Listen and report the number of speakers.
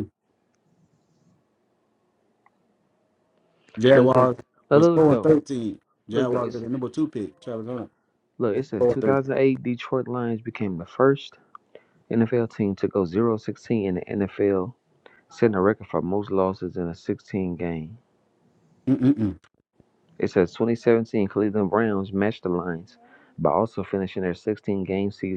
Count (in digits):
2